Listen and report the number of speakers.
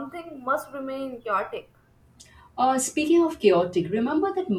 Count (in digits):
2